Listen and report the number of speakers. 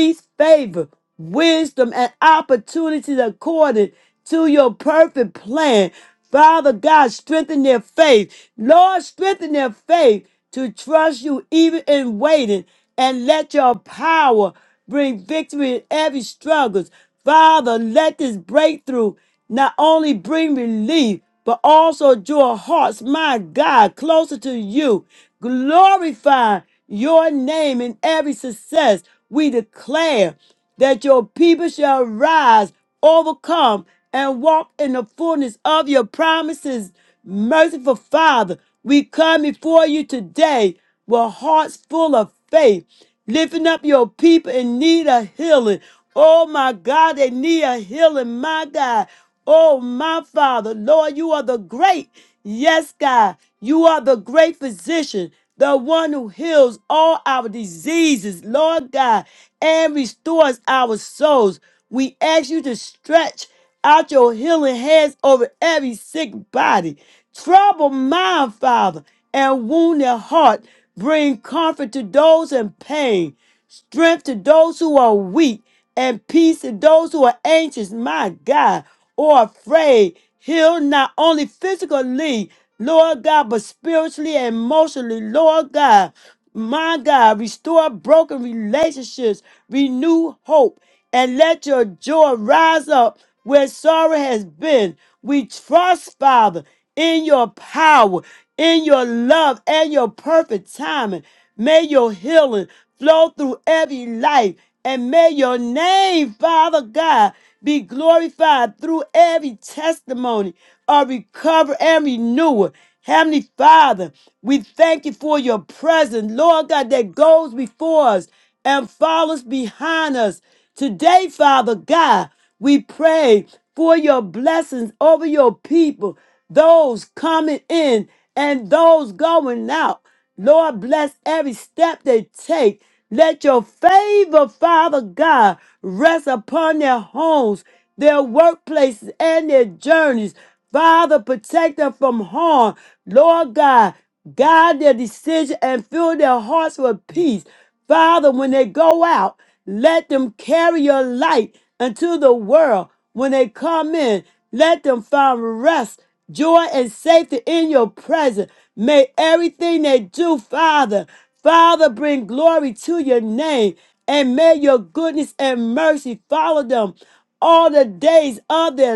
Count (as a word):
one